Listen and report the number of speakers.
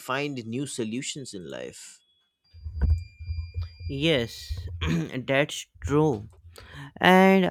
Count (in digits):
2